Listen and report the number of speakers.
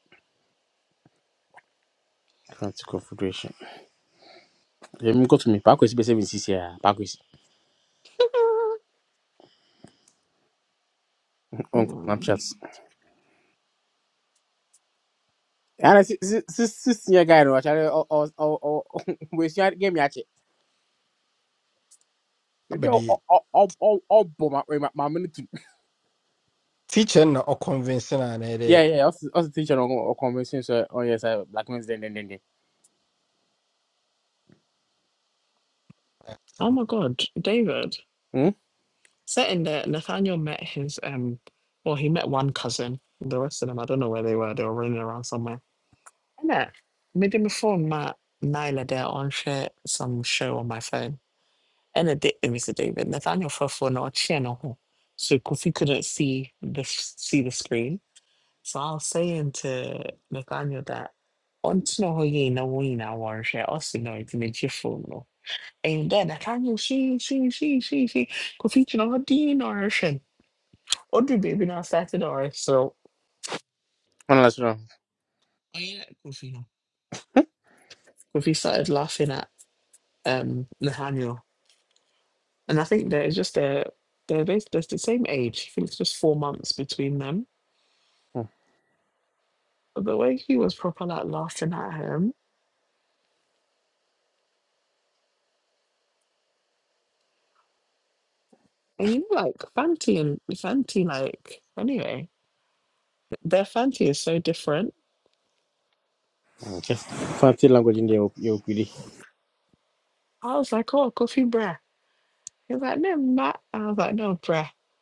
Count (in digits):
3